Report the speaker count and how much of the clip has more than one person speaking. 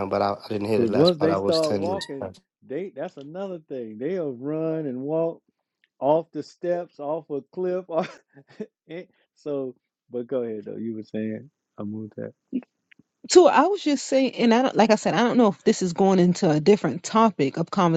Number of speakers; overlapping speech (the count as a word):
three, about 7%